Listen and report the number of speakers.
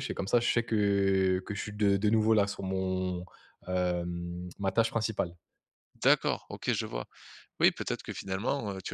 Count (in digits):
2